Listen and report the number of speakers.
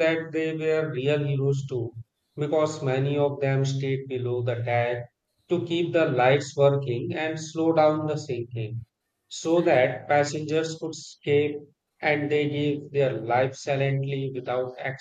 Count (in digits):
1